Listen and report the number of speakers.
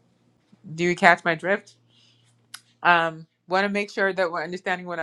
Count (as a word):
one